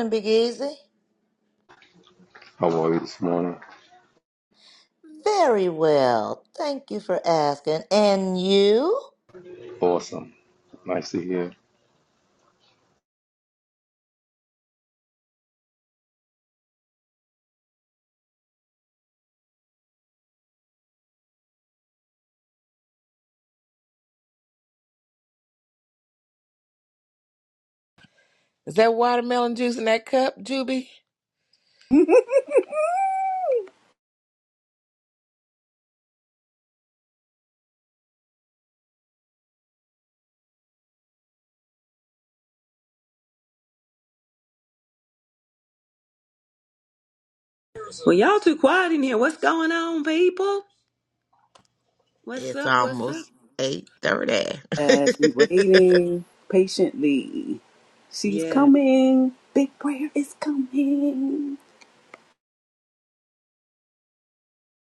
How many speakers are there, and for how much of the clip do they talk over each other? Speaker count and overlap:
5, about 2%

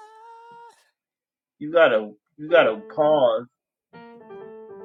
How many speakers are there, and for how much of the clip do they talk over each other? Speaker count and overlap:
1, no overlap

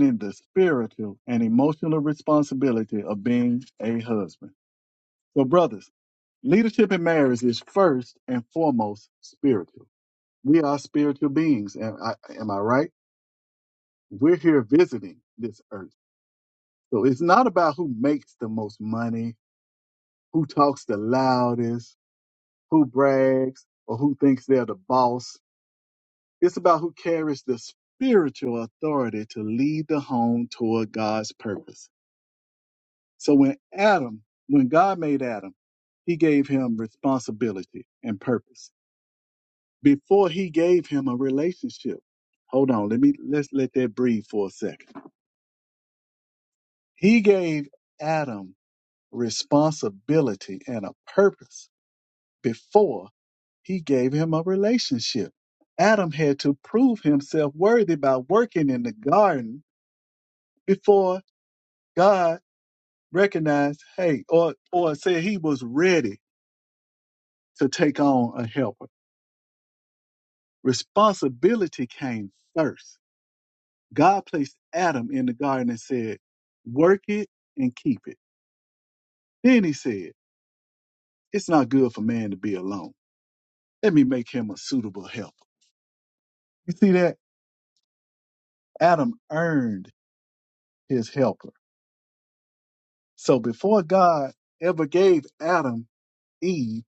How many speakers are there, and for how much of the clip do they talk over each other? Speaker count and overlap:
1, no overlap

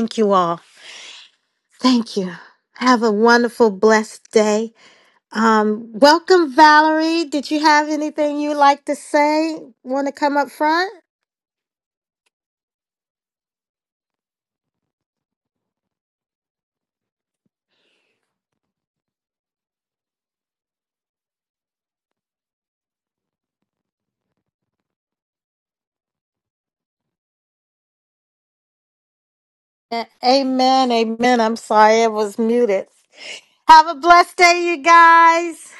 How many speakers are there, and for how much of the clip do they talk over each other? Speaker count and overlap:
1, no overlap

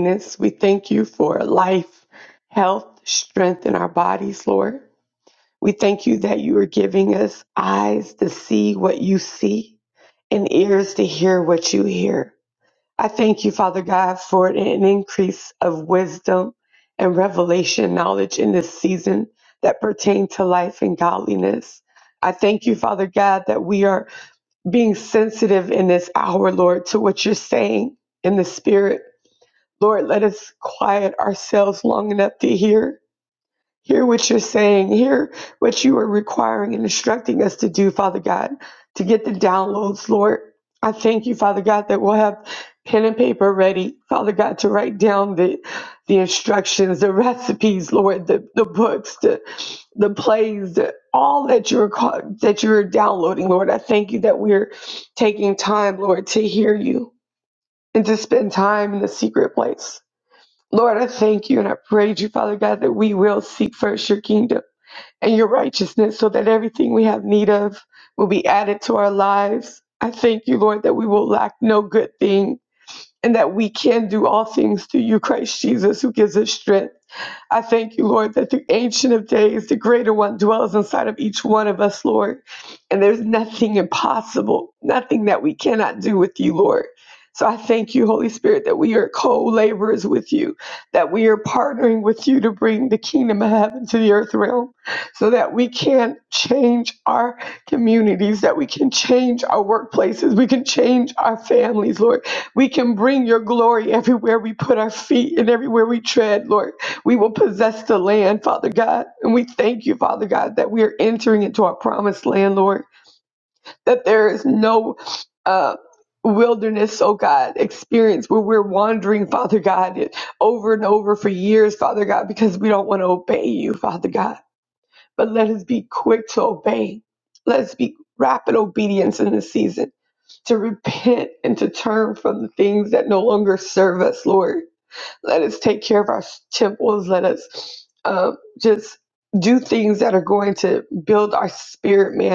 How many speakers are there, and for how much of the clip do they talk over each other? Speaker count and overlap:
1, no overlap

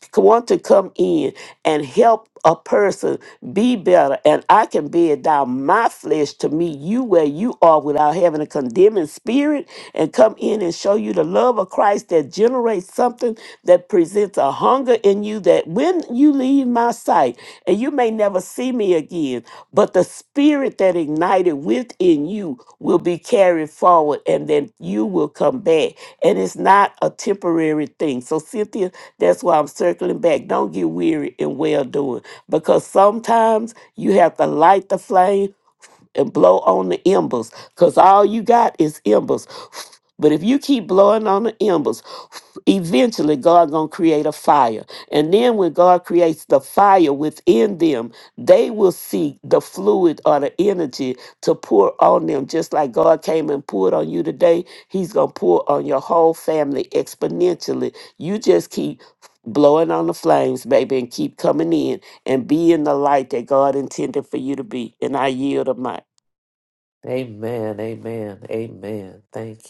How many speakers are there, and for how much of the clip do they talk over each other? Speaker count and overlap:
2, no overlap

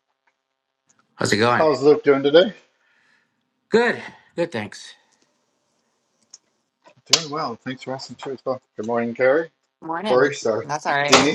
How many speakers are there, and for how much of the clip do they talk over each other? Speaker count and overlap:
3, about 6%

